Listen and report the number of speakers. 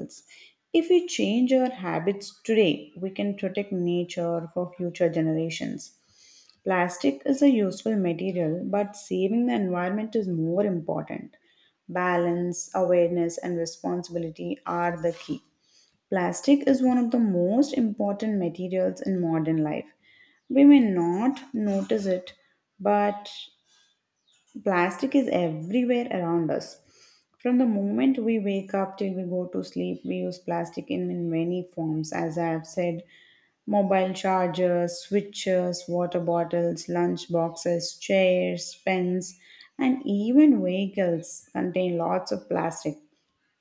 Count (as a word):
one